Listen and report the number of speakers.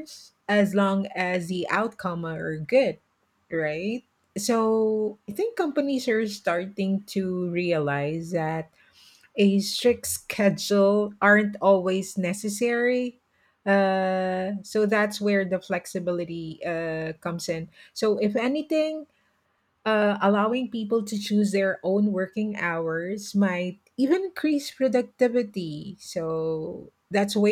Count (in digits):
1